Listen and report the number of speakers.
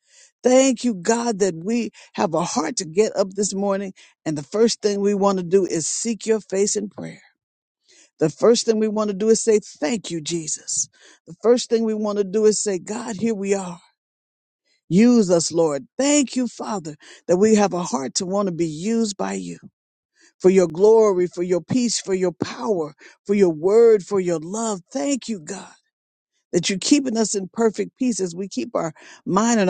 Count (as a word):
one